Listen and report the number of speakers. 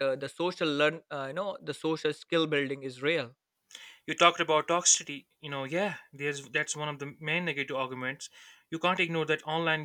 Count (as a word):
two